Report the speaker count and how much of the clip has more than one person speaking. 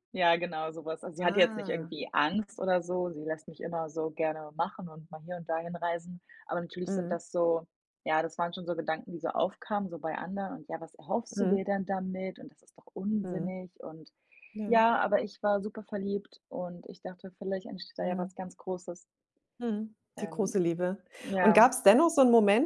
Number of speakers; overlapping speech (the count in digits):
2, about 11%